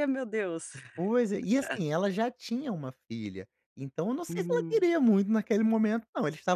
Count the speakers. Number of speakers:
two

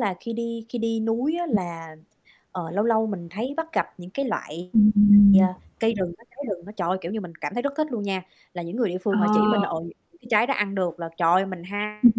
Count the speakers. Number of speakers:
two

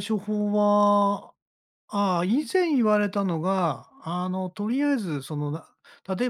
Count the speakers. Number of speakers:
one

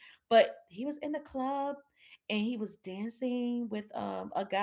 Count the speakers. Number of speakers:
one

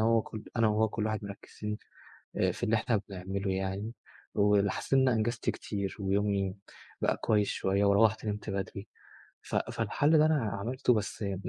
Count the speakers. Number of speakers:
one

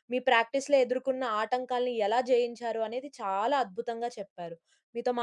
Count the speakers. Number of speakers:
one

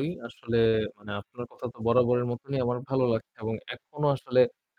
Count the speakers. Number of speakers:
one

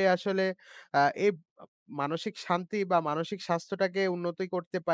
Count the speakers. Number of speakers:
one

